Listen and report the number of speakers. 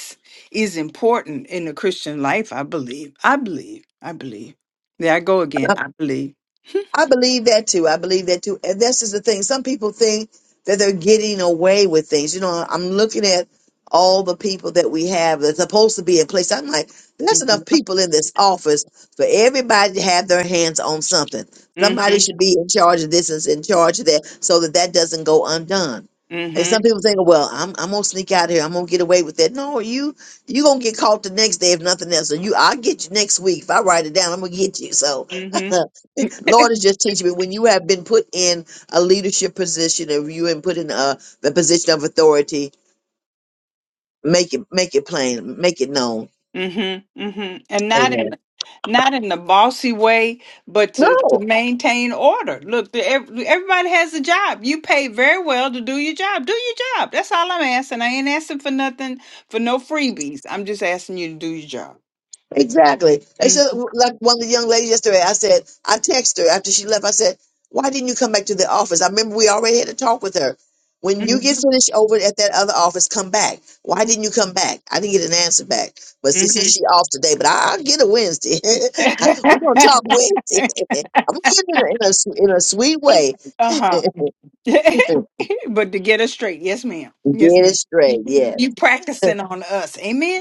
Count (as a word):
two